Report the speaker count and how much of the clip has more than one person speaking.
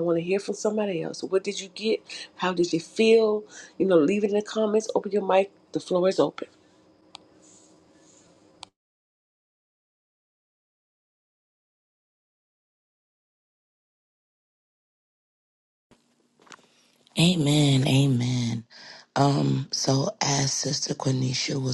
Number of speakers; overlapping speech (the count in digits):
2, no overlap